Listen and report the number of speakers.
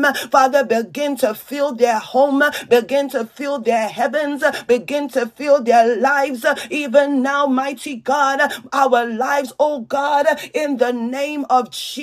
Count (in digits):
1